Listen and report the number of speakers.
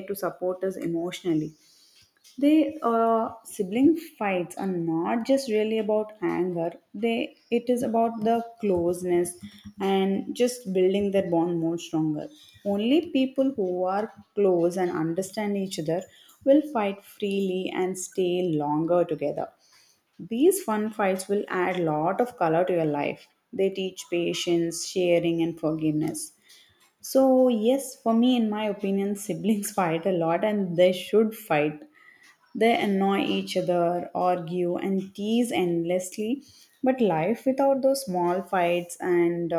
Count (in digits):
1